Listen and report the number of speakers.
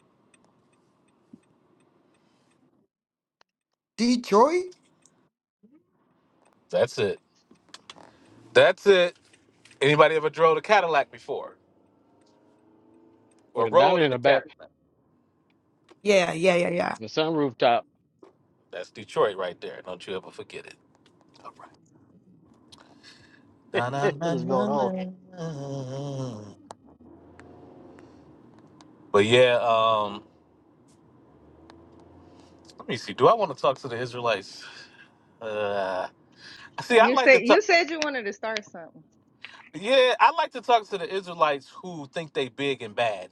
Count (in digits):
4